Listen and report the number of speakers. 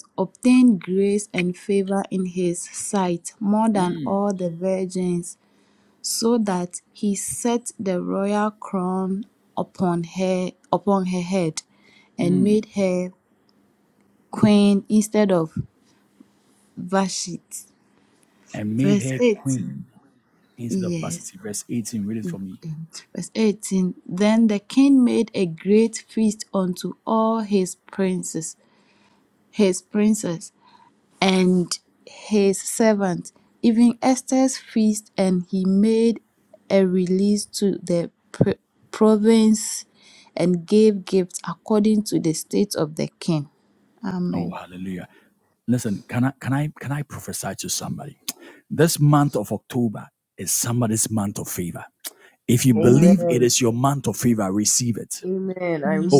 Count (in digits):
3